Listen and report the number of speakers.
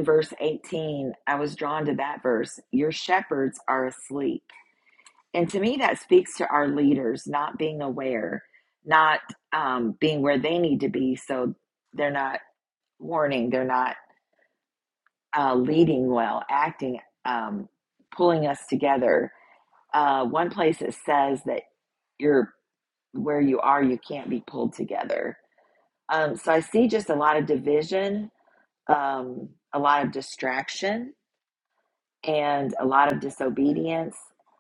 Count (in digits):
1